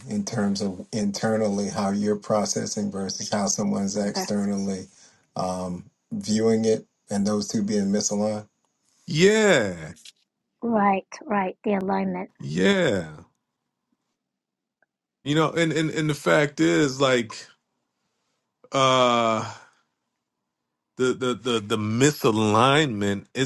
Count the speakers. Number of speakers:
three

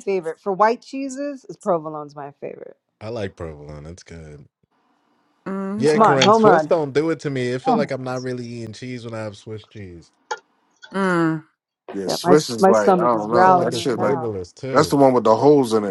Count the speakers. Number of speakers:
four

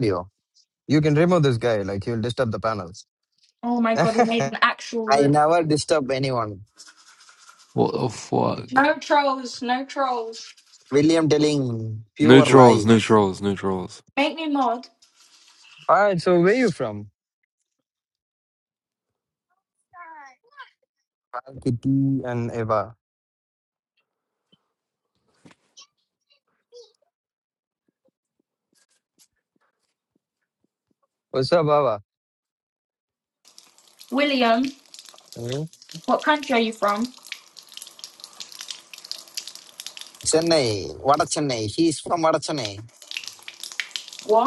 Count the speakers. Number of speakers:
four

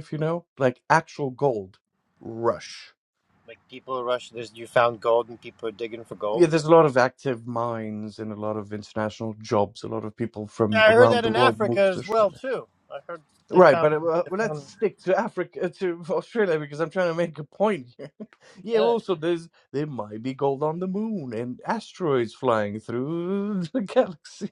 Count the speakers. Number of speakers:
two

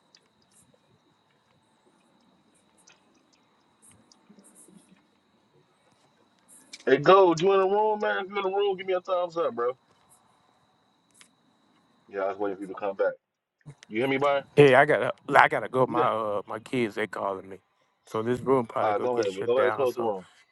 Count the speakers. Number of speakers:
two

